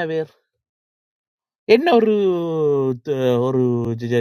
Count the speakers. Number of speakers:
1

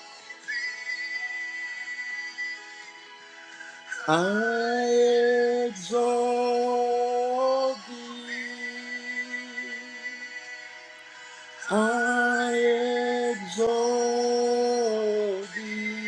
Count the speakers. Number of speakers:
1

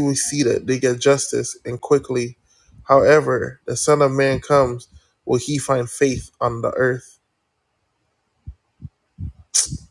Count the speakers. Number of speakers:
1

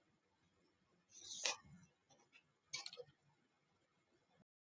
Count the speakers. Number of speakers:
0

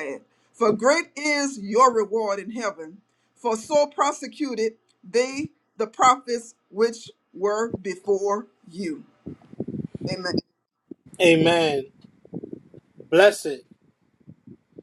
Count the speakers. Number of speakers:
2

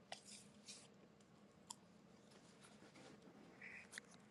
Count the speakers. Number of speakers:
0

